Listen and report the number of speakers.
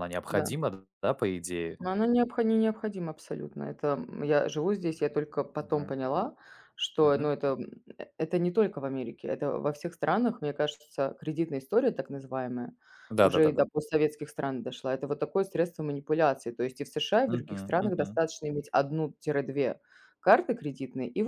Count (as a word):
two